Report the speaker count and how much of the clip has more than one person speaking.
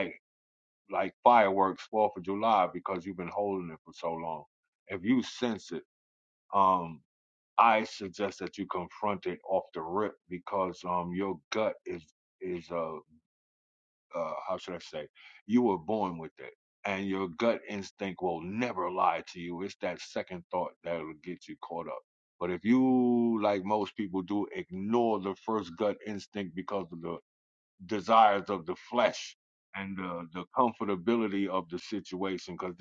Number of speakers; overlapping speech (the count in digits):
1, no overlap